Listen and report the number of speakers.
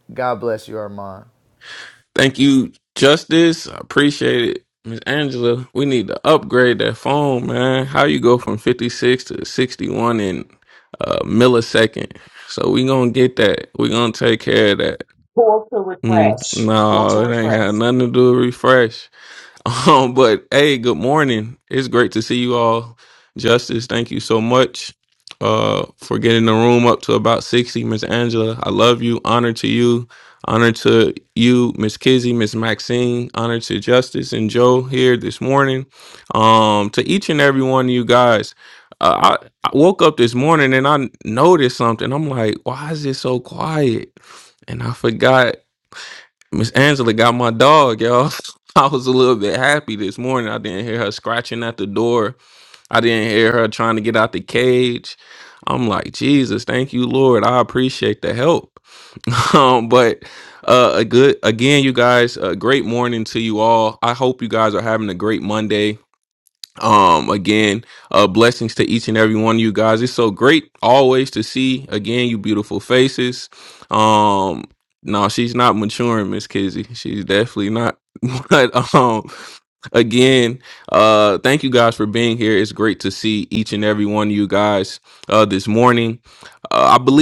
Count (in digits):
3